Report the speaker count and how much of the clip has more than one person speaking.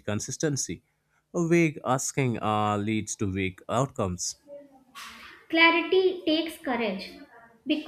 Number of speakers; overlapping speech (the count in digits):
2, no overlap